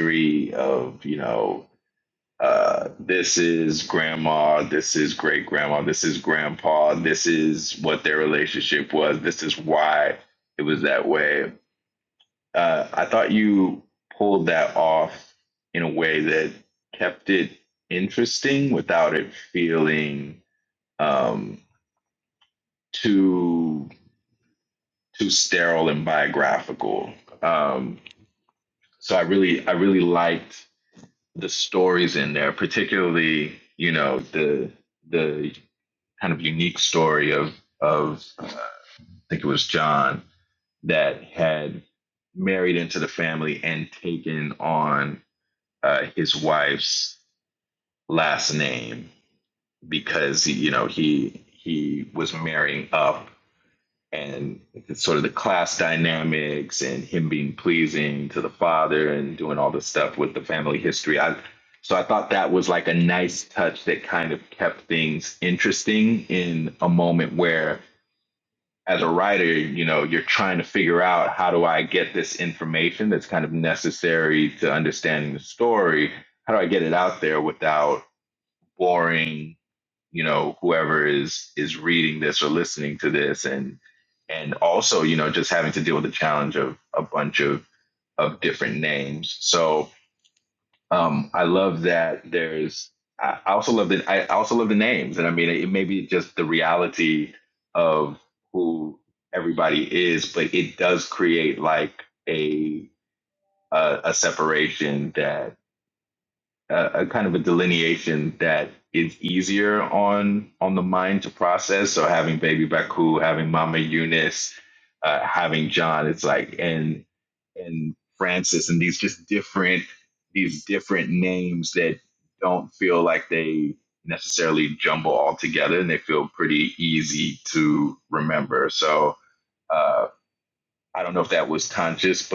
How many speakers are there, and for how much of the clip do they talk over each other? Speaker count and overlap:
one, no overlap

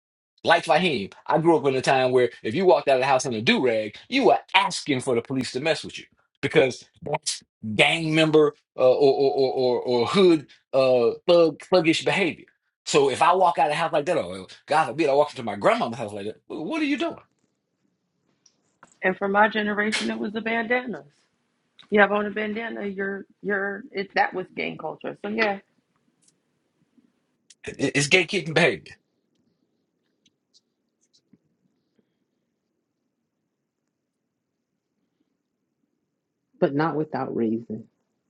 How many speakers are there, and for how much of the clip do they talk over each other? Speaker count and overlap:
three, no overlap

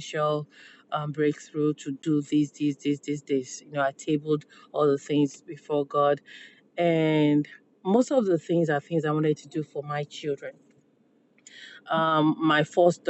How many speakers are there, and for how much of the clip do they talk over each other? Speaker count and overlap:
one, no overlap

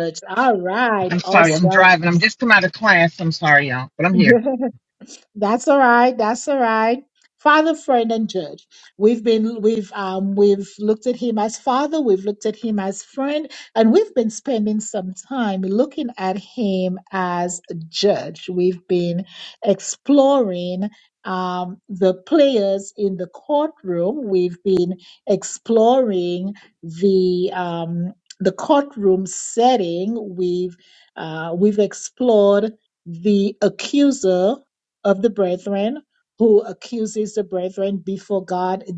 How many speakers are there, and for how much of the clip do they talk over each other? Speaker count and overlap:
two, about 2%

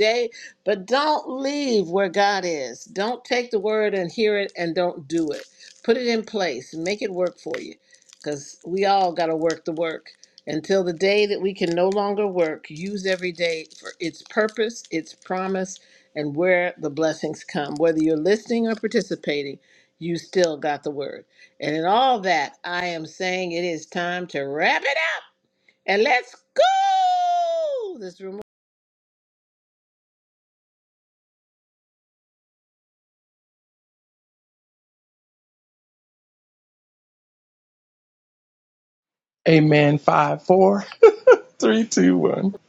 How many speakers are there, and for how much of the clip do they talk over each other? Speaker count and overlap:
two, no overlap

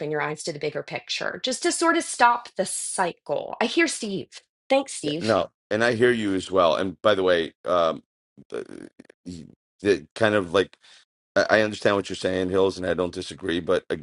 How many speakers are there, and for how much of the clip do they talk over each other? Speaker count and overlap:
two, about 2%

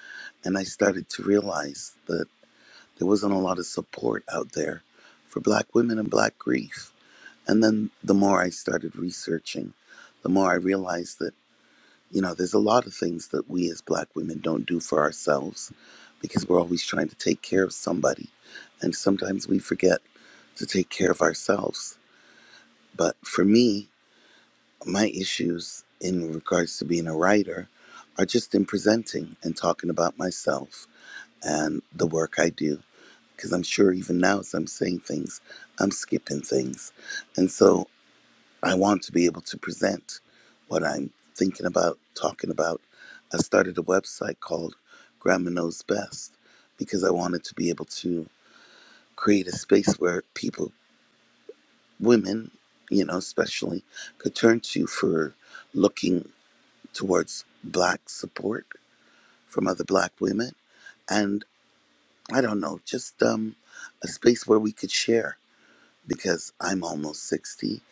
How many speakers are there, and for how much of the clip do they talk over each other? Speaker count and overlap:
one, no overlap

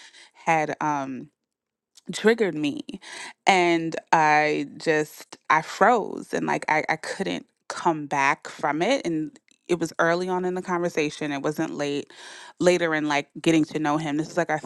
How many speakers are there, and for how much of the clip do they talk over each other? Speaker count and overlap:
one, no overlap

